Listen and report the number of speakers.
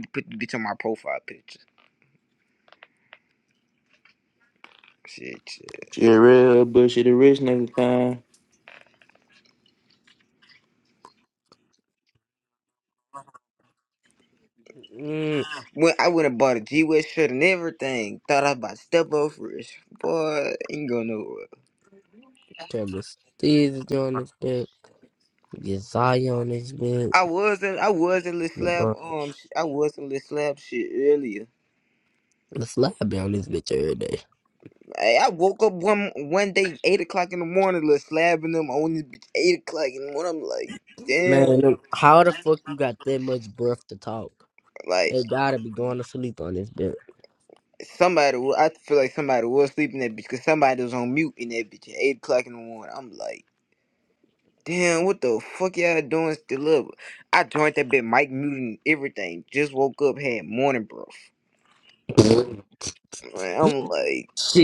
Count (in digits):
3